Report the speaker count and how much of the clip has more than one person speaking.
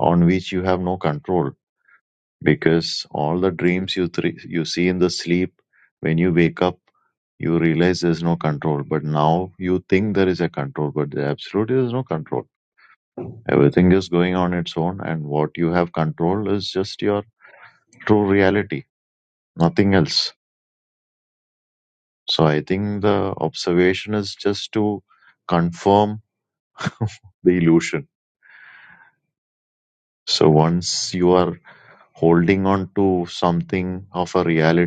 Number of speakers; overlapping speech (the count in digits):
1, no overlap